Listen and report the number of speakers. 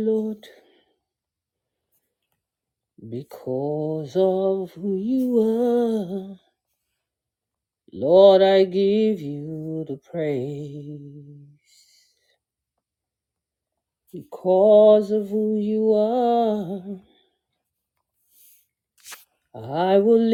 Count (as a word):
one